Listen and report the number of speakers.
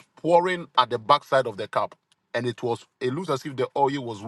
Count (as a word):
one